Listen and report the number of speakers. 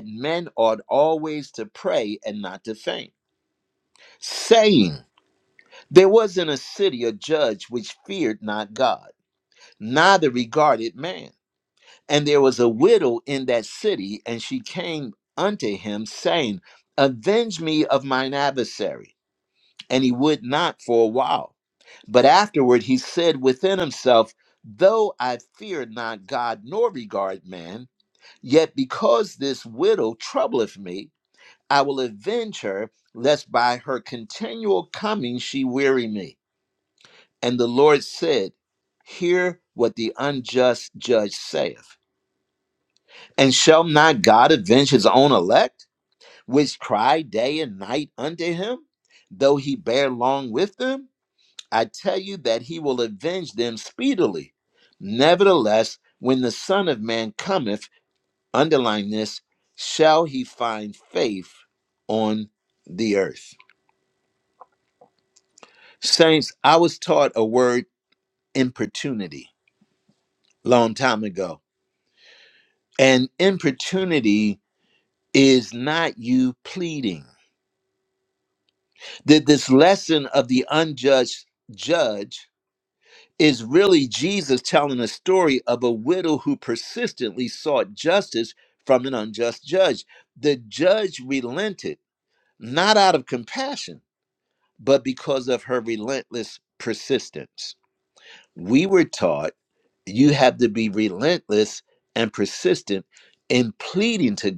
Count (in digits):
1